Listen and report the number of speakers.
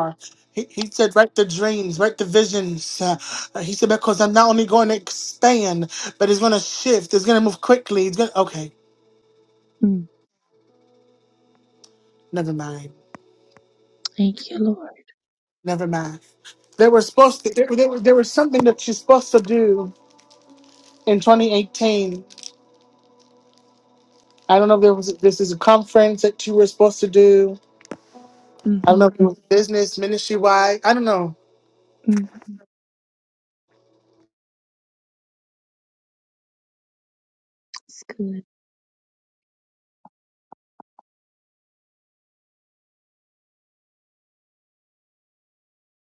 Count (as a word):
two